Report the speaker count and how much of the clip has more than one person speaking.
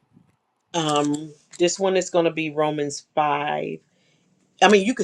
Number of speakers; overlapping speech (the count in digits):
1, no overlap